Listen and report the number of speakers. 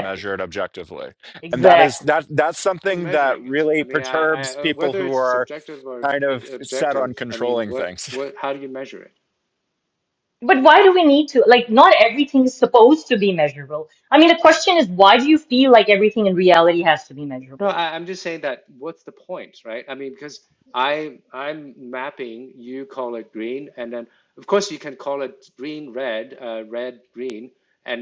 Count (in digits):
3